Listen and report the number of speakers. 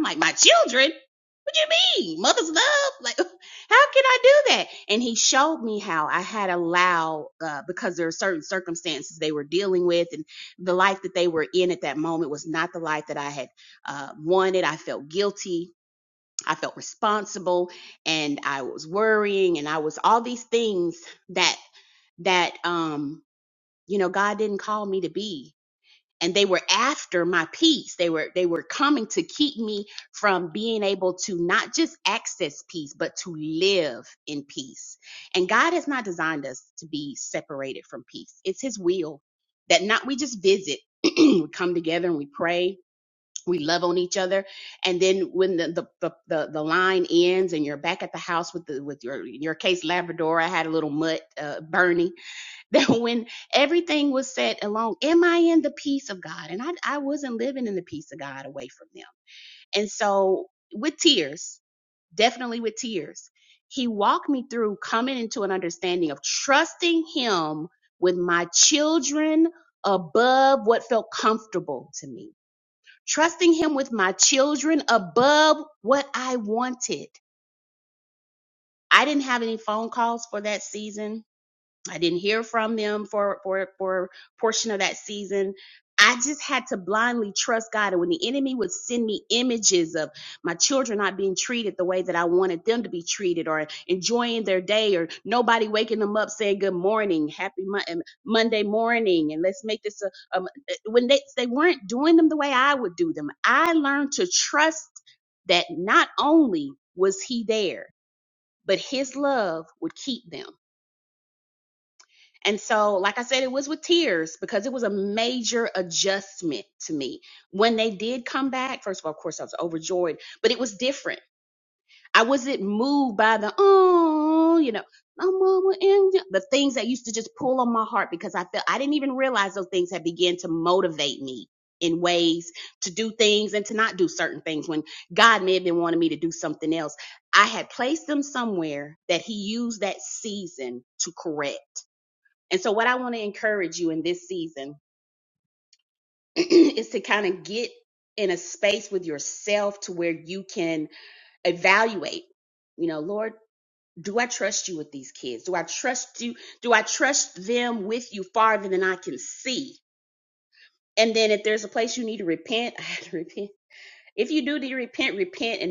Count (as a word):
one